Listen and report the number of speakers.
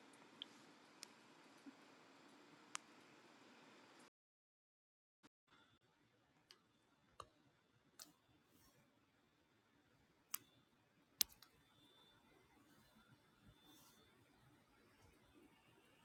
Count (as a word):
zero